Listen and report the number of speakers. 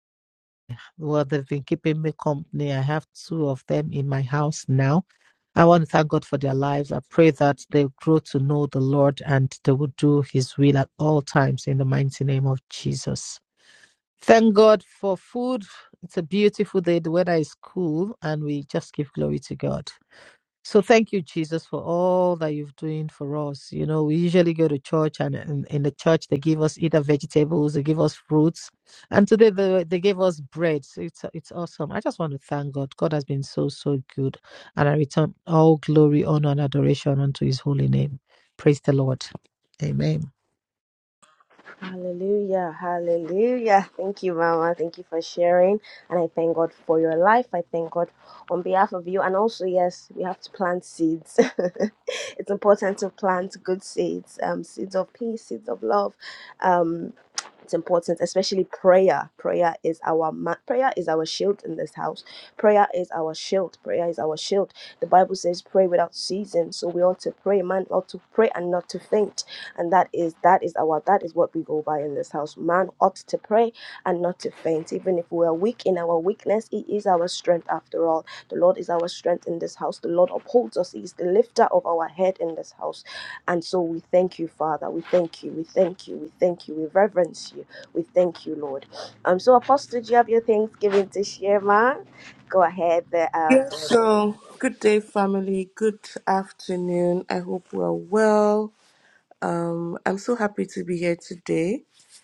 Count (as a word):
three